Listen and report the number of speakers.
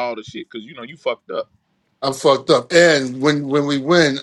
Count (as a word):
two